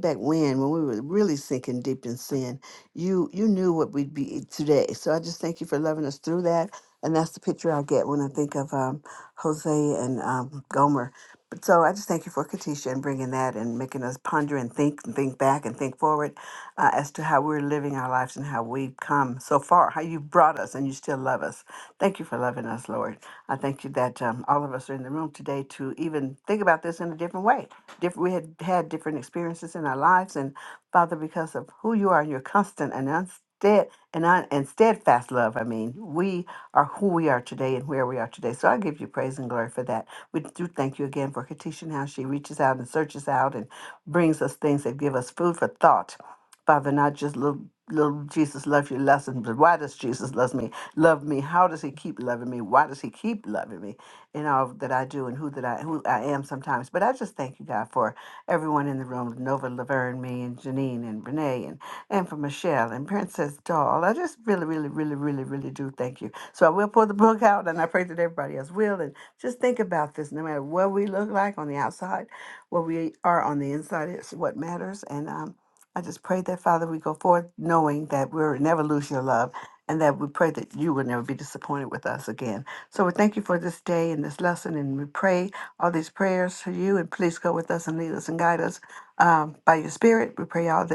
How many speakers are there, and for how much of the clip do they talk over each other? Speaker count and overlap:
1, no overlap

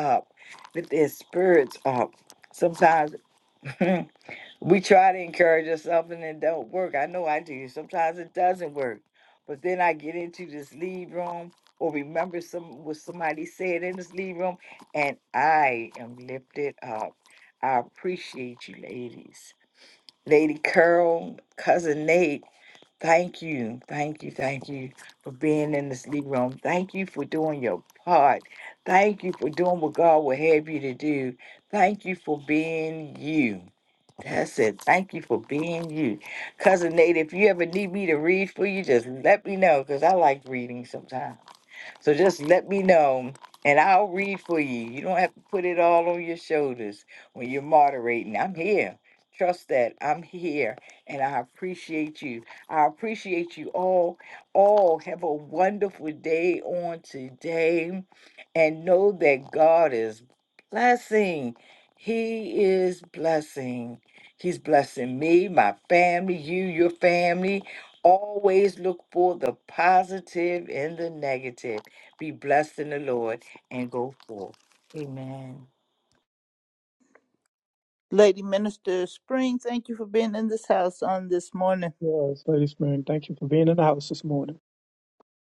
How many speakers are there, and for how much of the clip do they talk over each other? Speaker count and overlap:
3, no overlap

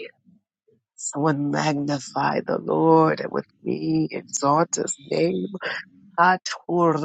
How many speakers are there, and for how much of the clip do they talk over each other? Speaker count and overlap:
1, no overlap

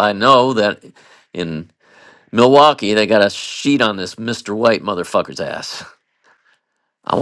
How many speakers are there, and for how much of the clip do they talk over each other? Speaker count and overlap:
1, no overlap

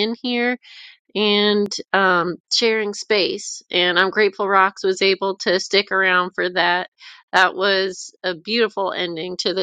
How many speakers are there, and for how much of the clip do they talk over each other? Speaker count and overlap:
1, no overlap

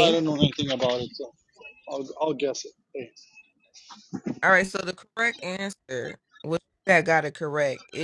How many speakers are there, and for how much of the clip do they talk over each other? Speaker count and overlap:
2, about 2%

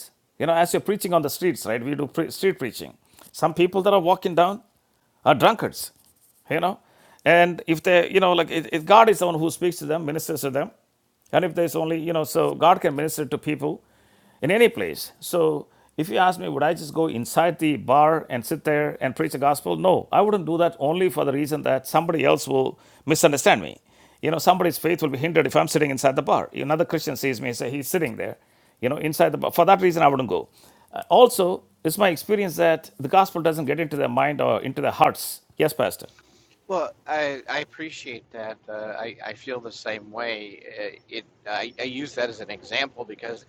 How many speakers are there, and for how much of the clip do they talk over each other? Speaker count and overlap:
2, no overlap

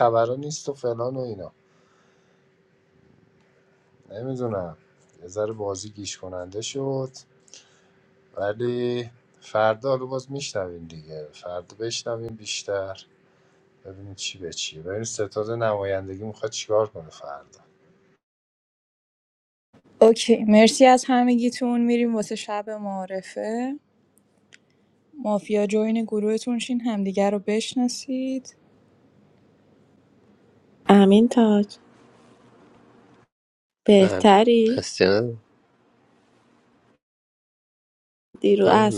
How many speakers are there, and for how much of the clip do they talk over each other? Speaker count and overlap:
4, about 2%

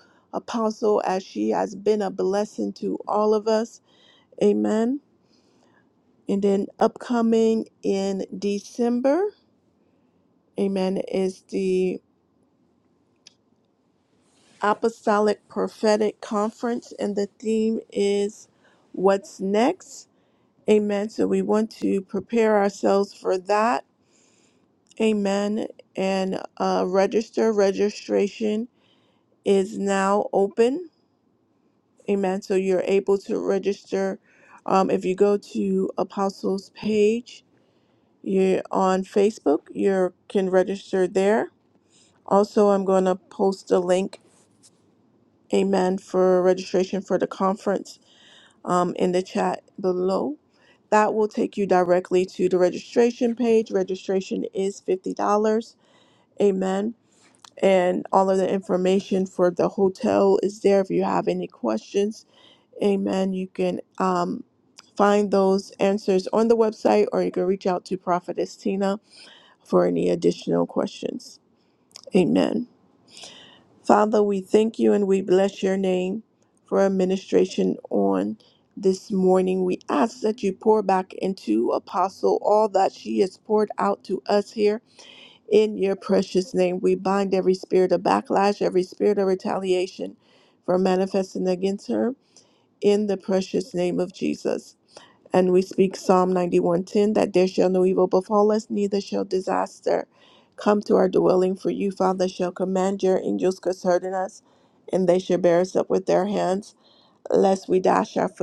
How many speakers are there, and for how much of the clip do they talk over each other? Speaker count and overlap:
1, no overlap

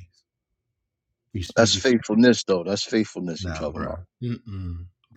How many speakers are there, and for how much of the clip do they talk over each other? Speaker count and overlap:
2, about 18%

